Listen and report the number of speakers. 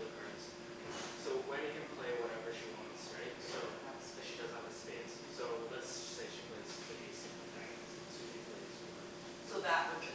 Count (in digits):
2